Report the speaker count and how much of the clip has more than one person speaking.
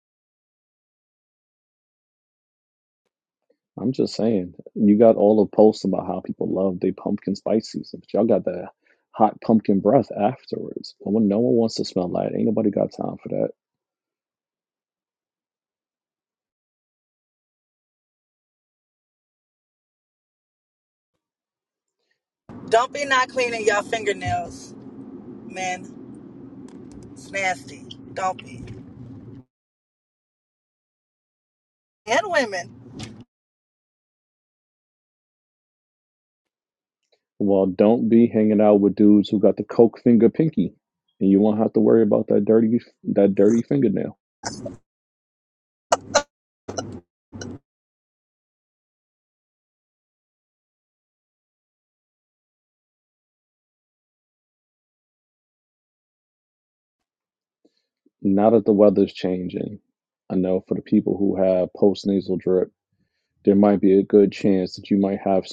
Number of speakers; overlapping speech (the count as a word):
two, no overlap